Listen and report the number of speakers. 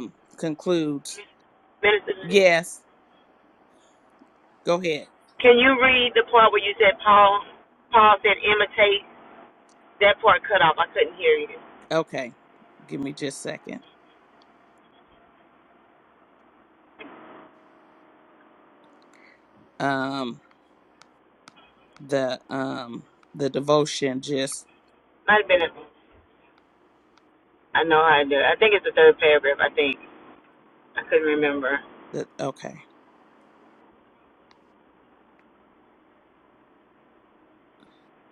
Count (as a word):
two